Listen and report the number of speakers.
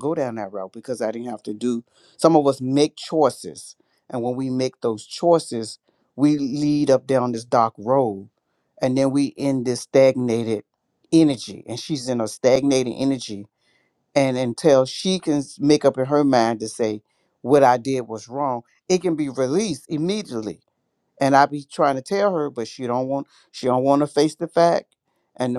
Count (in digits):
1